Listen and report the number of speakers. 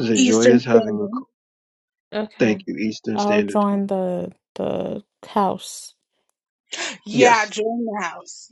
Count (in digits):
3